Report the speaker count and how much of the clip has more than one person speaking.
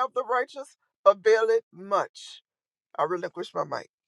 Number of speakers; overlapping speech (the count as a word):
one, no overlap